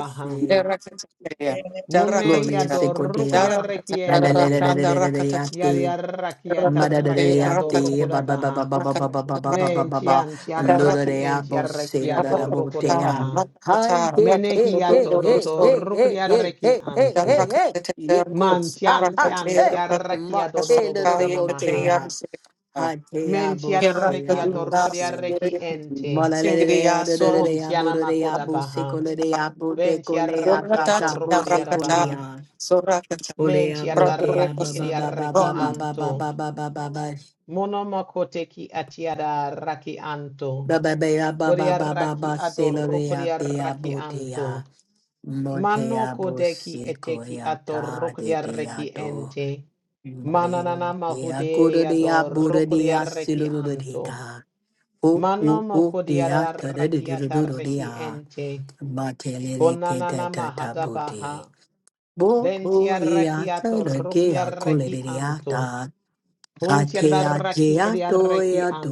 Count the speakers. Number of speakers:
3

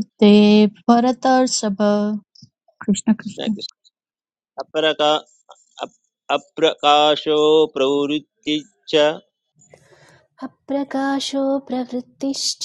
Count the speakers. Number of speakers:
3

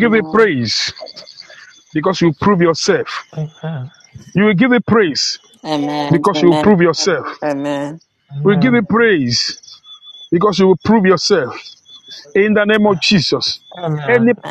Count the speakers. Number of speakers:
3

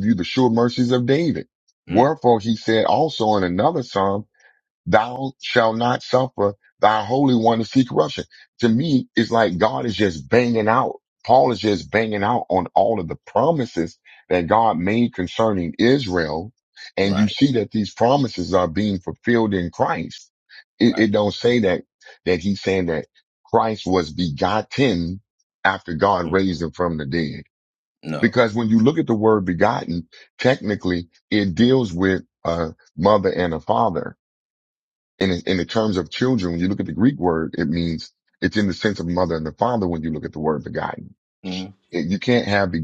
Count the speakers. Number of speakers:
2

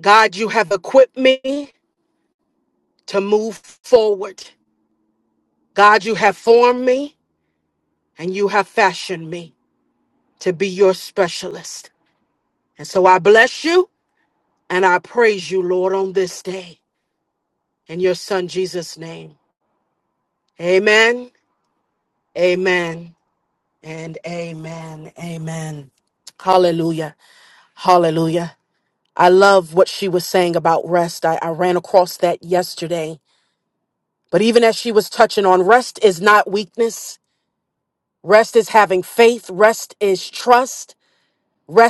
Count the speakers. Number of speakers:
1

